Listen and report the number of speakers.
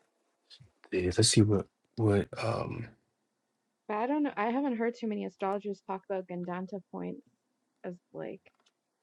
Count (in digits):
2